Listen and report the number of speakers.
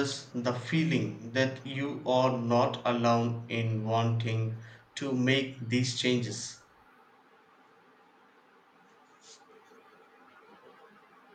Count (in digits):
1